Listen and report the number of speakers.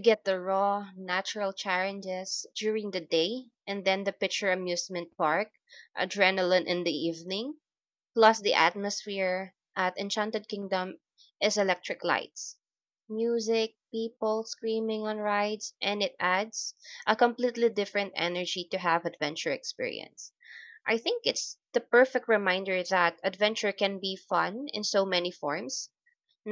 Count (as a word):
one